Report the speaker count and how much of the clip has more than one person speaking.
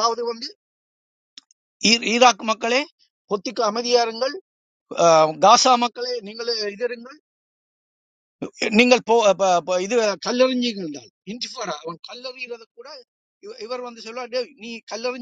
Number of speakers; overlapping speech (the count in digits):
1, no overlap